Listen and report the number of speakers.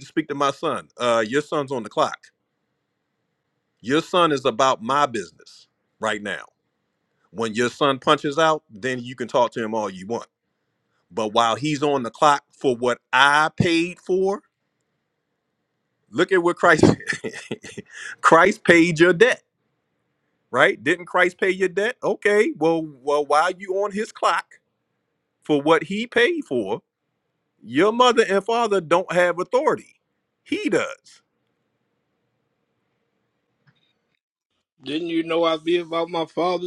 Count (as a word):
two